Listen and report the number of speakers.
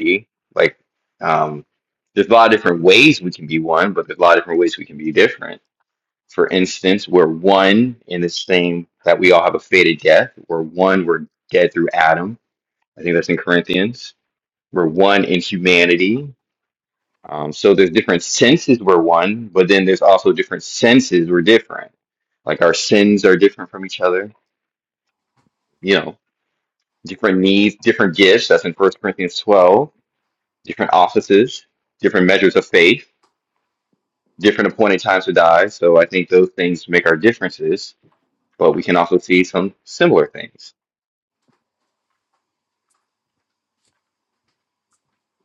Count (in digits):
1